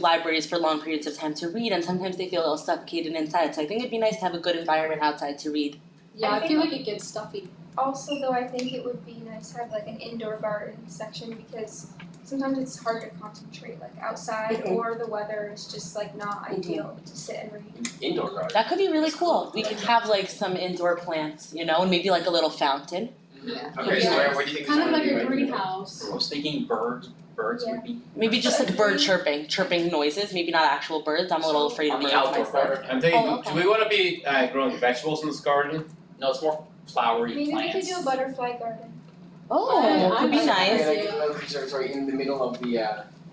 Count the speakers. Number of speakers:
6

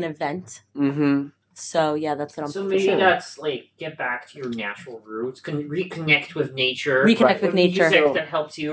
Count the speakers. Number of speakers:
3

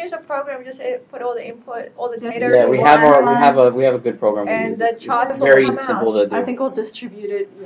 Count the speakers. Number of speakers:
3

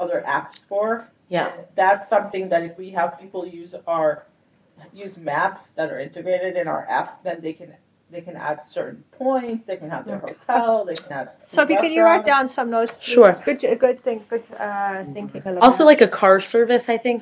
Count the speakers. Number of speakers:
3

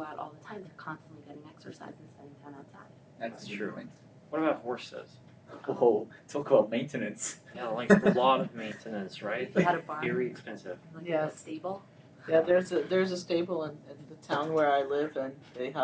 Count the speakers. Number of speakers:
4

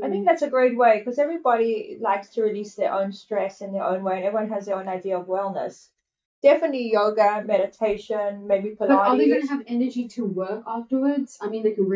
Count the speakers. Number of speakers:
2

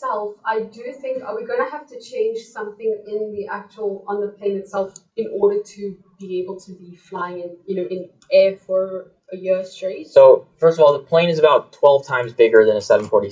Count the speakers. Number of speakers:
2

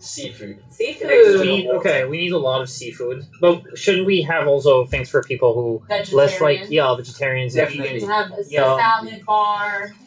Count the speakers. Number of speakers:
3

